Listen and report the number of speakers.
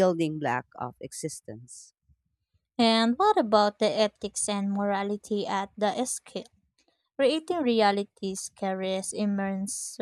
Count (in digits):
2